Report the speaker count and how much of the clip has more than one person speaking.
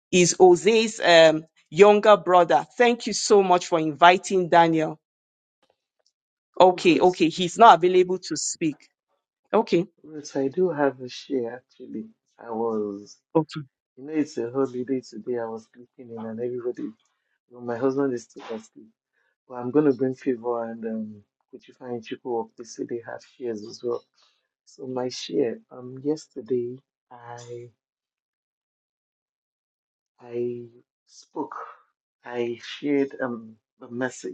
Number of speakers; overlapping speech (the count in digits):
2, about 1%